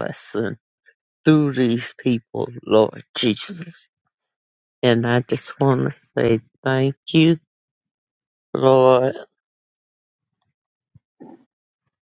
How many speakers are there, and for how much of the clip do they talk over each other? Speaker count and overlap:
1, no overlap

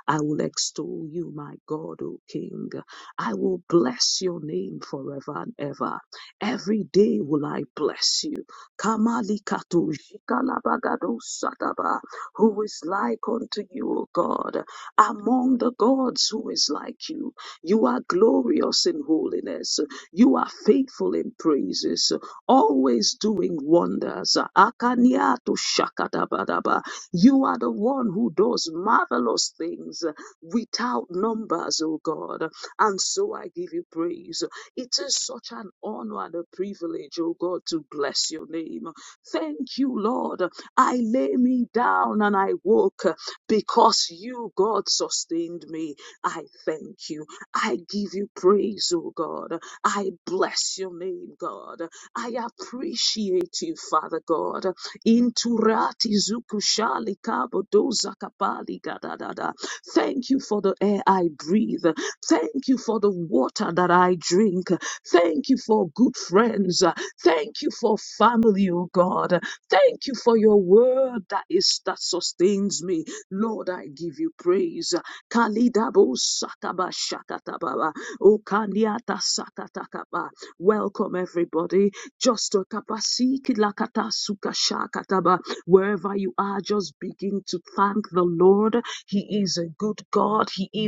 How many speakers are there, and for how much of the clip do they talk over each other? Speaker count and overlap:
1, no overlap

